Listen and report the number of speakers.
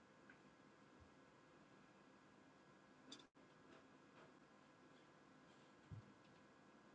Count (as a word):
zero